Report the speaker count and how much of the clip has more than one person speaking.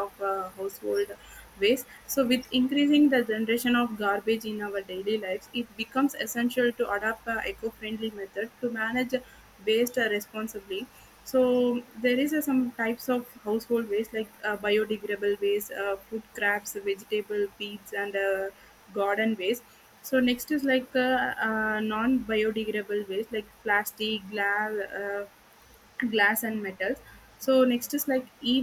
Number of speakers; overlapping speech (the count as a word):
one, no overlap